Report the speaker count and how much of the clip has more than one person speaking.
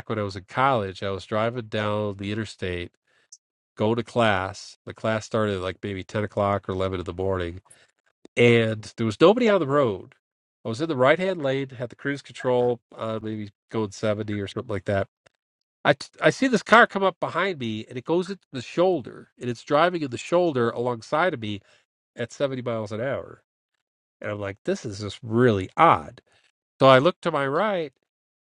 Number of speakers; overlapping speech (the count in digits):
1, no overlap